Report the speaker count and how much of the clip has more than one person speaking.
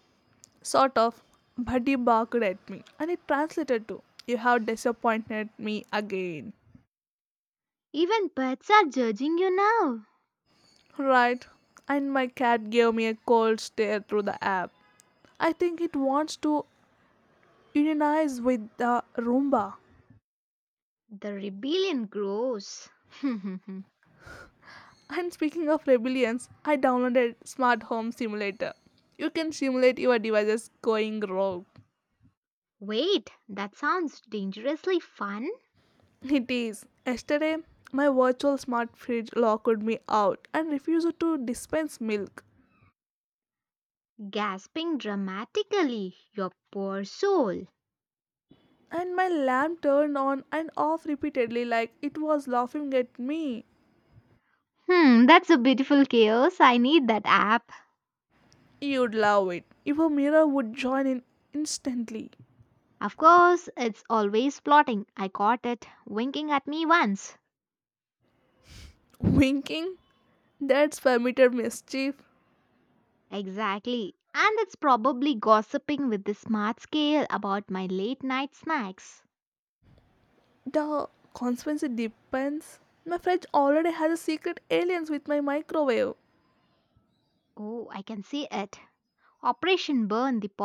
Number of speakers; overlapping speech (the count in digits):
2, no overlap